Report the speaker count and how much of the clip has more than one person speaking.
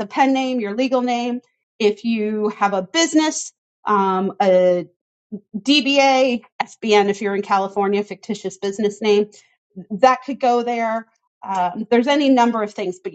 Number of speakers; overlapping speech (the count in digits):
1, no overlap